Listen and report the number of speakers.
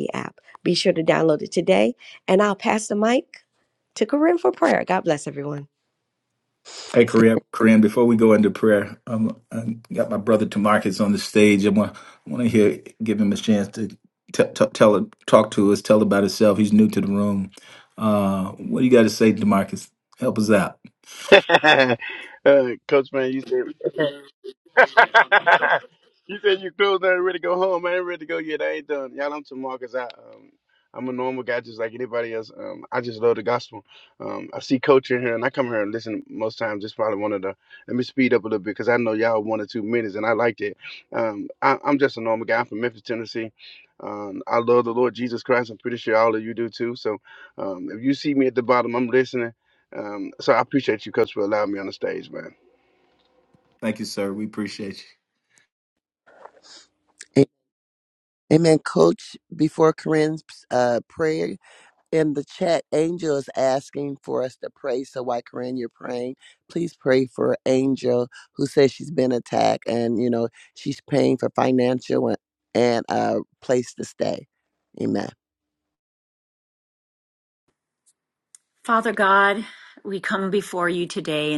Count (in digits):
5